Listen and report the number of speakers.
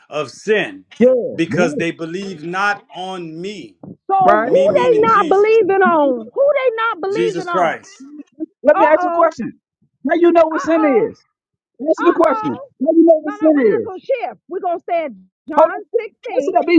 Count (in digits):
3